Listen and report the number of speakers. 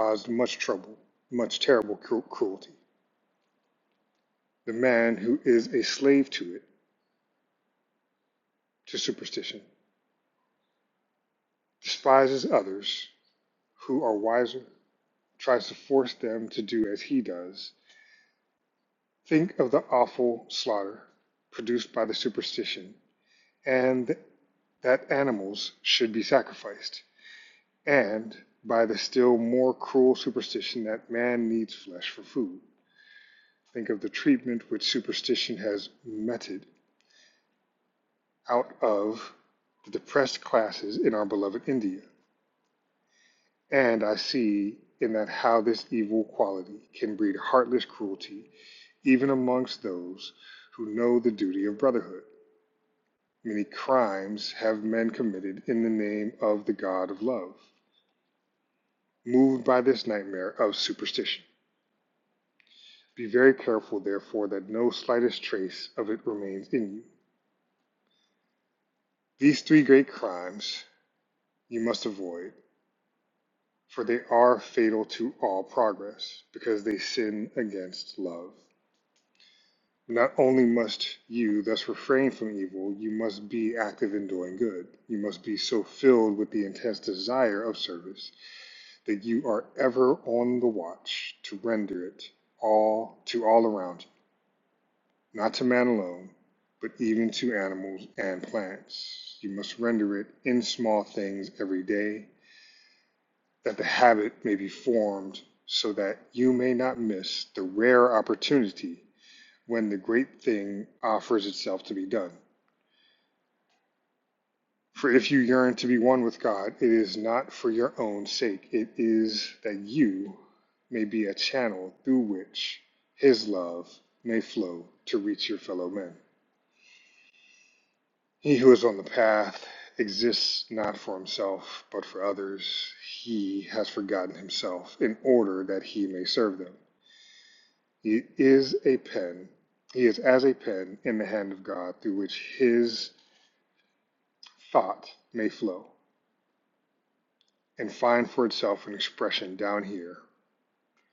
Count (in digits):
1